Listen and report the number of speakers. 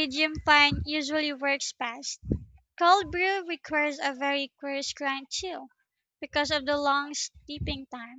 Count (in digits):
1